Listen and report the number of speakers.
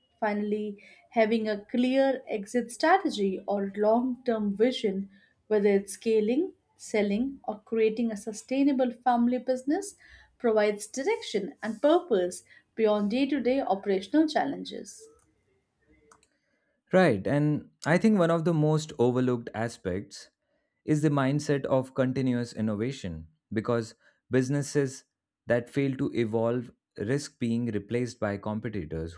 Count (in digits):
2